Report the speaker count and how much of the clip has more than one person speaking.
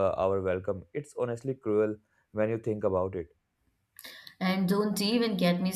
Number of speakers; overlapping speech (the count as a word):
two, no overlap